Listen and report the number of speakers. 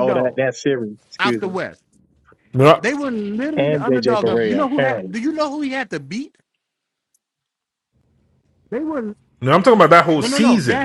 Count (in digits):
3